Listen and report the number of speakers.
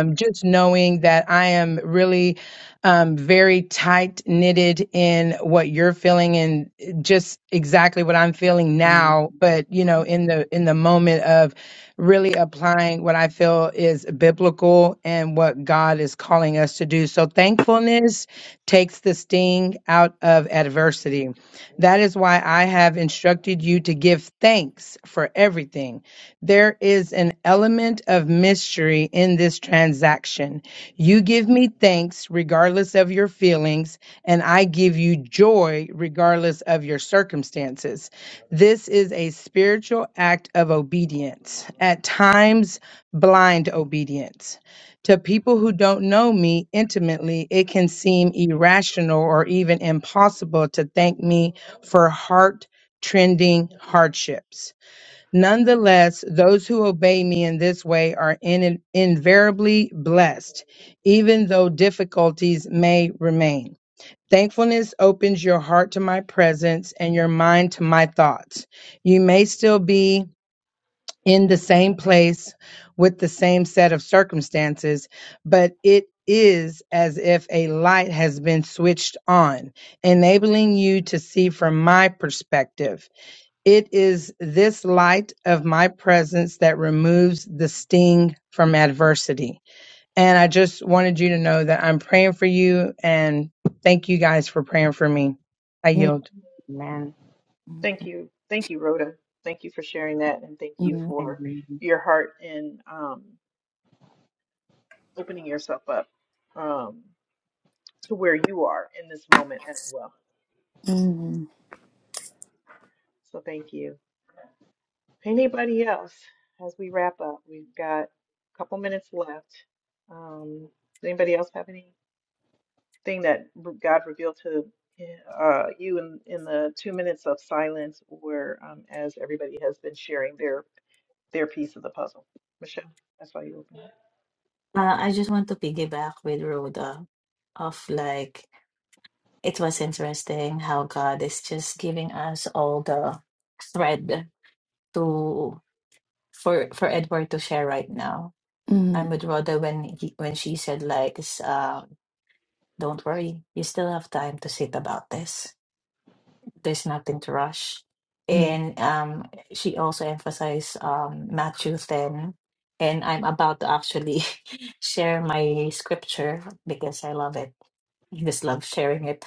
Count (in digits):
5